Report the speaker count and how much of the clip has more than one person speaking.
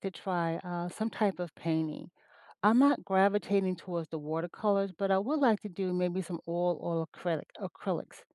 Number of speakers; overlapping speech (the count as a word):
one, no overlap